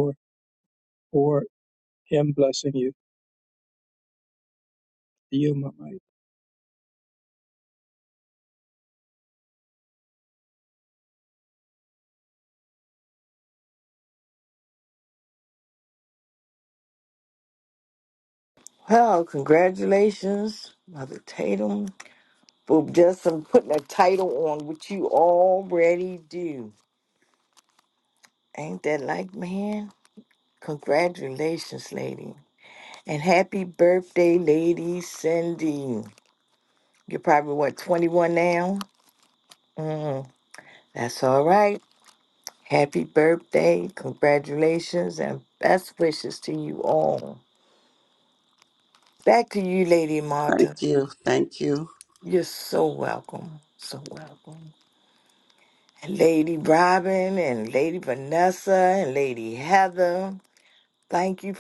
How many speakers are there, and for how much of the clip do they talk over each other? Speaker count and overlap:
three, under 1%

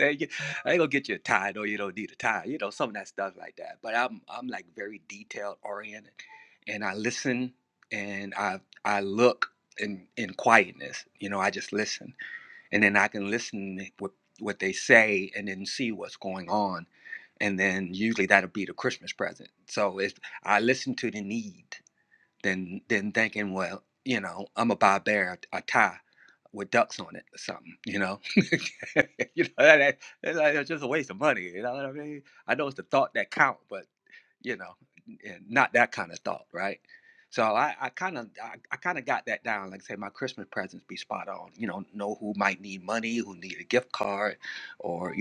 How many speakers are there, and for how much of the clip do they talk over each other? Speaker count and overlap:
one, no overlap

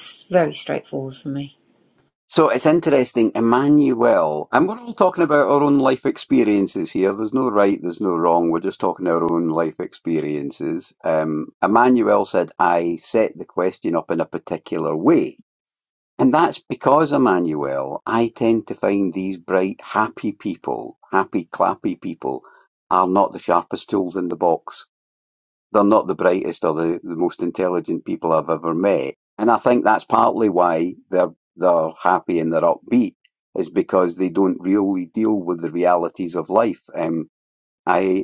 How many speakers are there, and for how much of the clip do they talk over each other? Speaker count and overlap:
two, no overlap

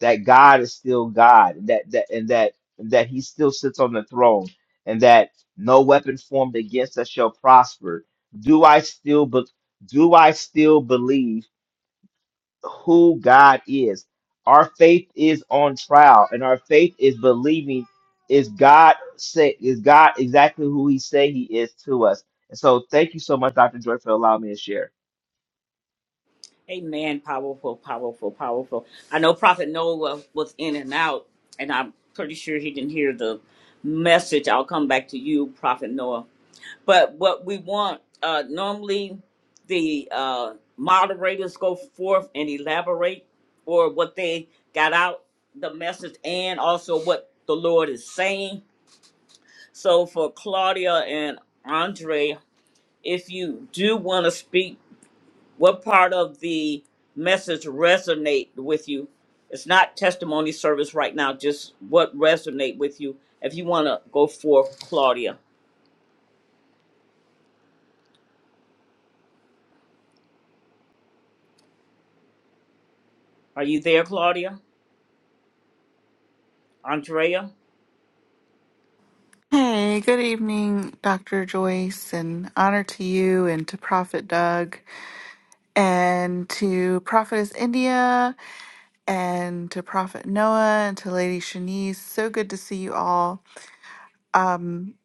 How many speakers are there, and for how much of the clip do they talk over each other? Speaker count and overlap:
three, no overlap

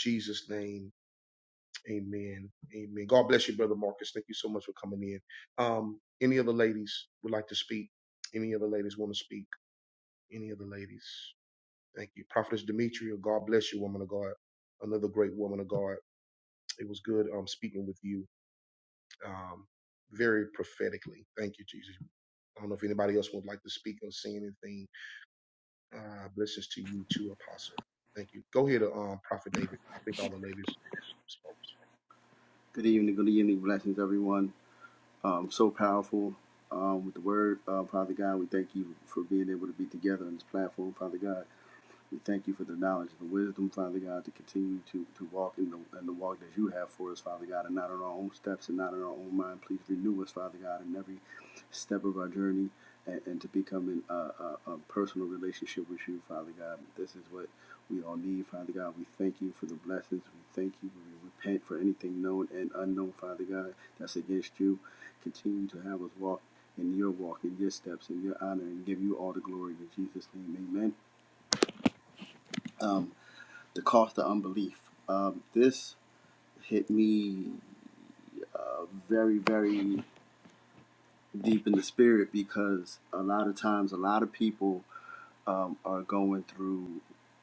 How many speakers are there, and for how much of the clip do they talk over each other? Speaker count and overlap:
two, no overlap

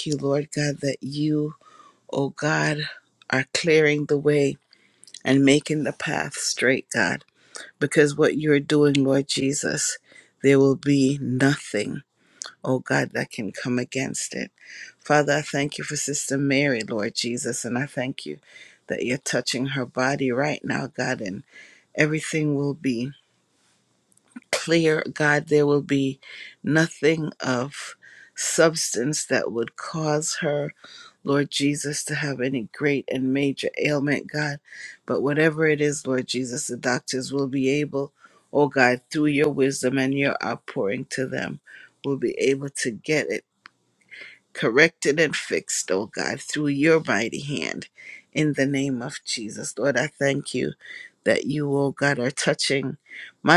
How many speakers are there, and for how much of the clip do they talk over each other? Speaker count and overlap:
one, no overlap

